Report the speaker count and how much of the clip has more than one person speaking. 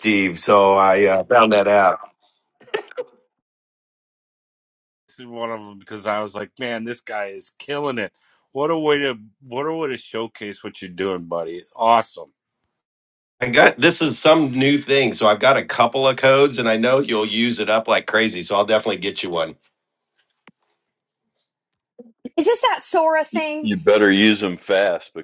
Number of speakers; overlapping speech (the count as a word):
four, about 1%